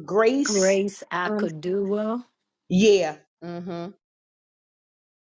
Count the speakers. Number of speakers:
2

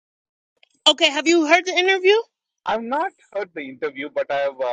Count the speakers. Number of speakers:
2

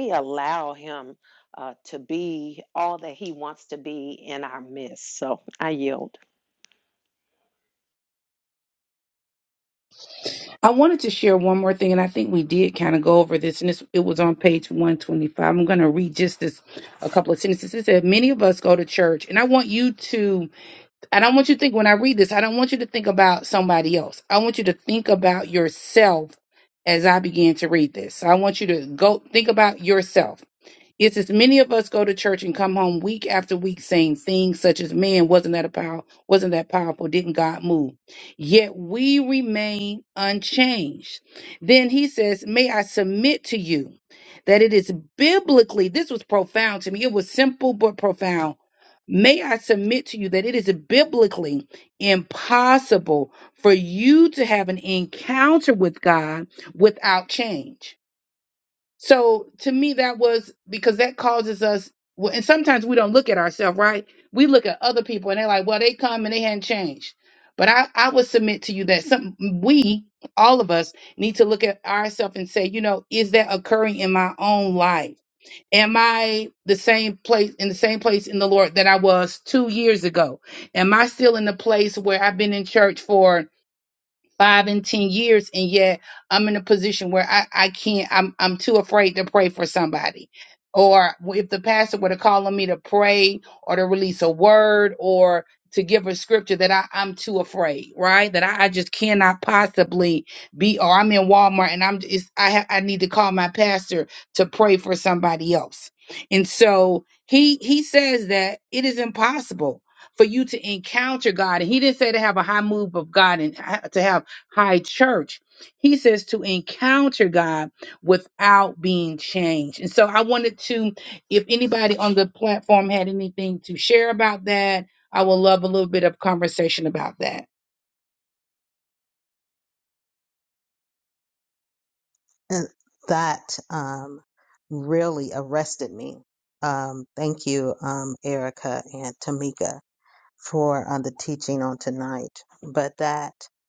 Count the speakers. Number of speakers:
3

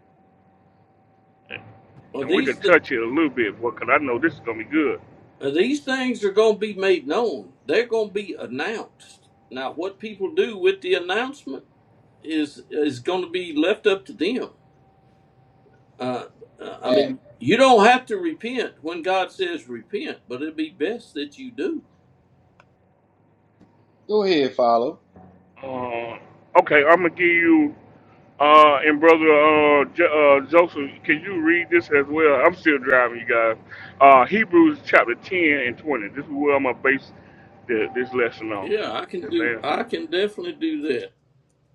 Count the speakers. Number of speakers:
3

